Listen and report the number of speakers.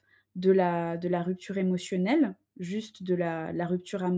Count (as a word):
one